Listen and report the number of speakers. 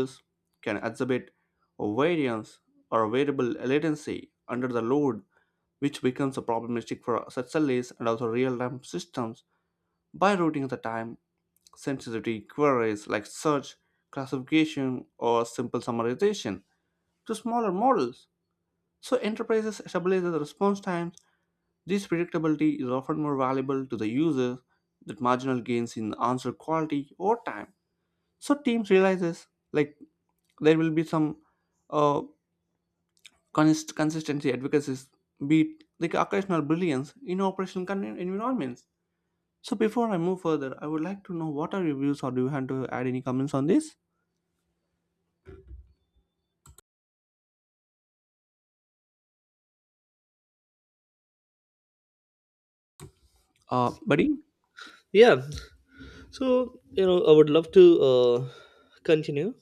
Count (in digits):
2